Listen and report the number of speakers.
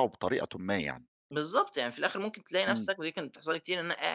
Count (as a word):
two